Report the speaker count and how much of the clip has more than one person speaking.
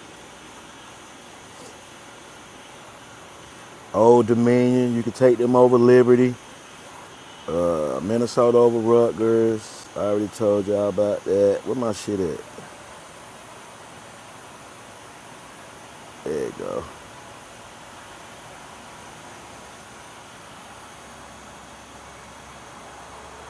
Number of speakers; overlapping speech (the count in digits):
1, no overlap